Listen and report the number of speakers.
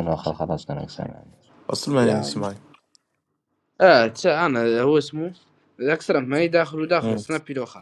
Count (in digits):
3